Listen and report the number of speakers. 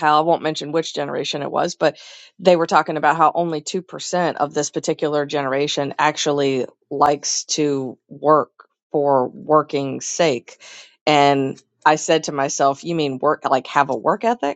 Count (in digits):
1